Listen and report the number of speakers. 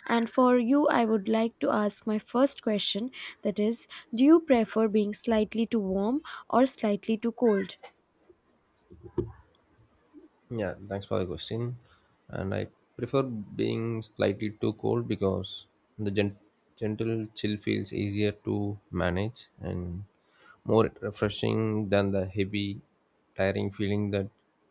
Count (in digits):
2